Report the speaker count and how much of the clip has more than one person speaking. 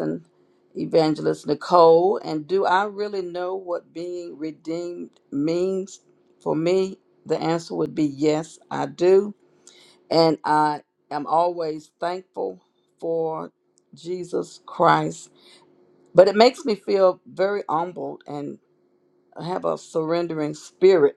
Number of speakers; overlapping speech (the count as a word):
one, no overlap